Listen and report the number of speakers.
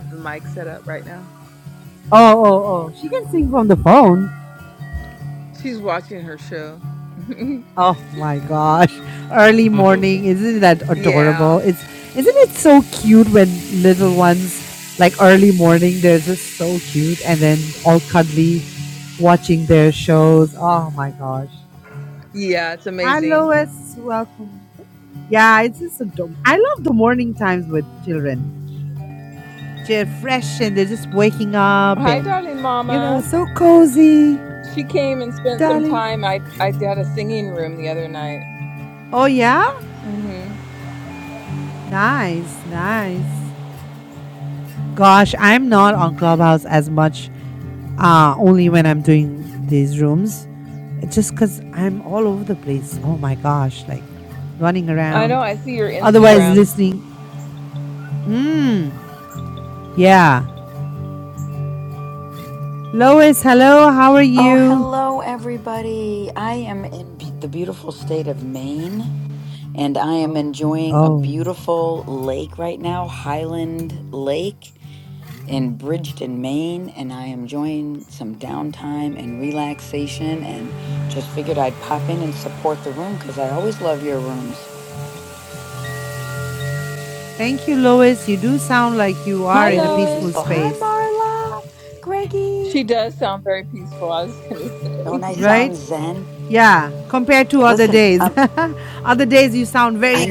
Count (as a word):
three